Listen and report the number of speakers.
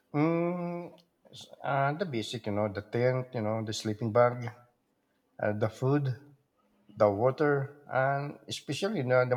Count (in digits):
1